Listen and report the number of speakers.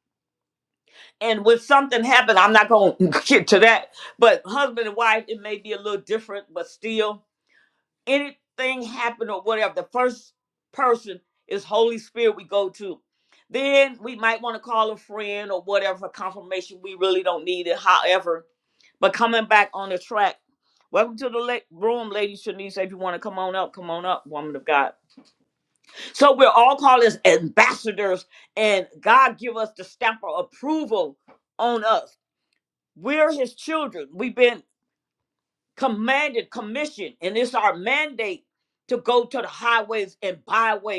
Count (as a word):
one